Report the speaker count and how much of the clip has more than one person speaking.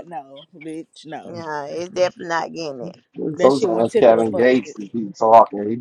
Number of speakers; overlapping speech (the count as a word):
three, about 25%